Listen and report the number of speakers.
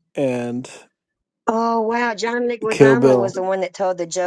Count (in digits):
2